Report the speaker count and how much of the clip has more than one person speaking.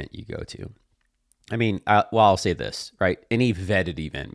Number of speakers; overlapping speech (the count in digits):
1, no overlap